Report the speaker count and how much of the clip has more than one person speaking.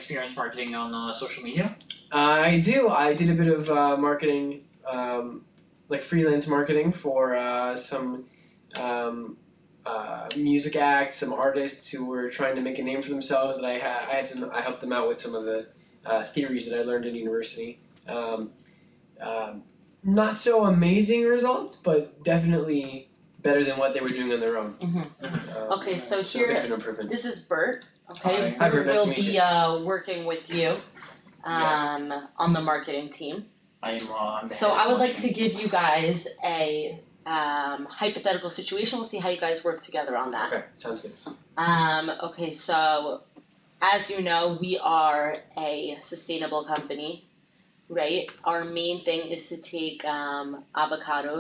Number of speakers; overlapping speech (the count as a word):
four, about 7%